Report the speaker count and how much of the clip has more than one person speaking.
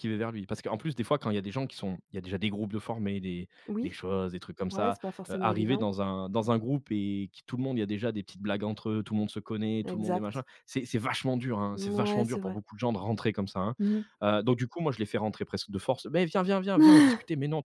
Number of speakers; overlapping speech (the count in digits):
2, about 14%